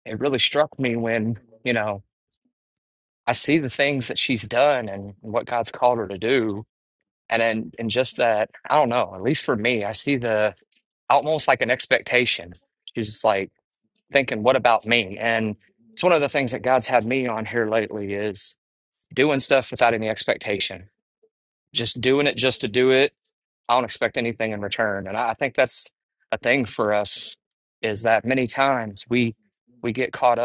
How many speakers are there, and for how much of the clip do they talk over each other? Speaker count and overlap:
1, no overlap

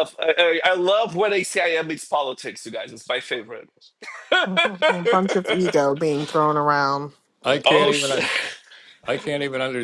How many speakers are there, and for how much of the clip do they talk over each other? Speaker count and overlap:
3, about 5%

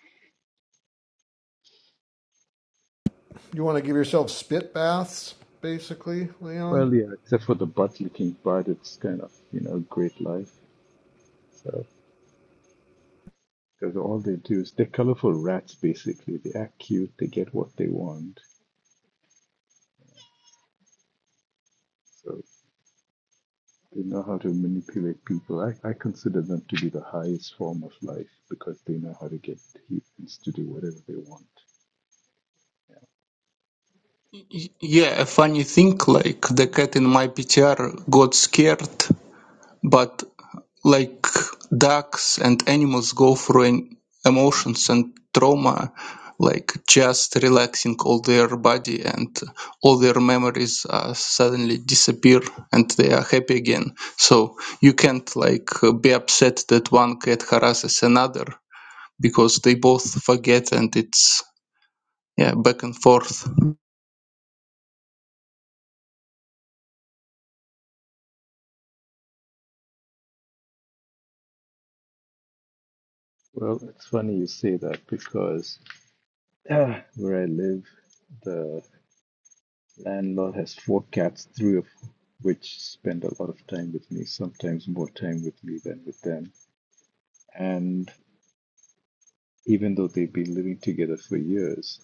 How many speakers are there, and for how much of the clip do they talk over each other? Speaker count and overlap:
3, under 1%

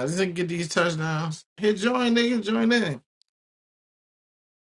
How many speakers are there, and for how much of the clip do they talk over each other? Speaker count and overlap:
1, no overlap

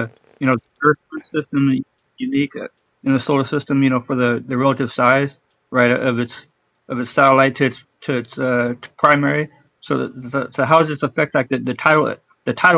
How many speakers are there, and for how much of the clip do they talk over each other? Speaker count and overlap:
1, no overlap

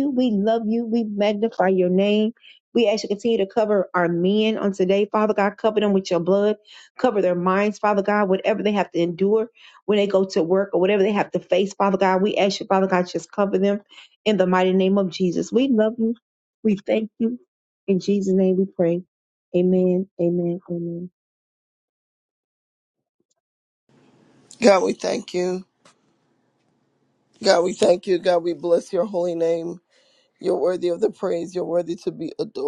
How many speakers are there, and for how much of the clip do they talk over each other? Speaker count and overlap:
2, no overlap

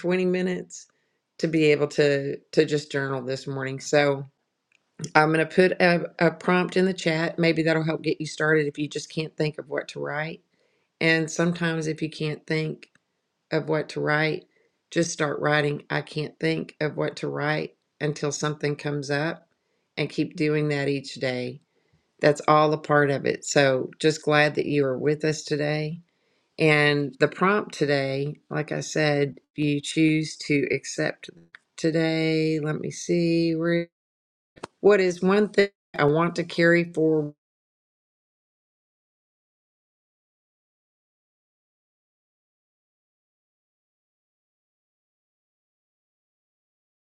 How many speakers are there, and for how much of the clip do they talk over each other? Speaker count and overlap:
1, no overlap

